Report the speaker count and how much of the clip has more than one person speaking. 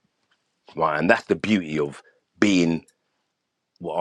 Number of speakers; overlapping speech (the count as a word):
one, no overlap